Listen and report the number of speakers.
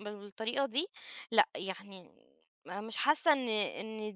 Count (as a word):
one